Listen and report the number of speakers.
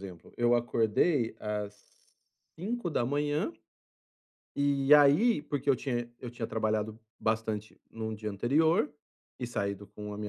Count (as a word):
one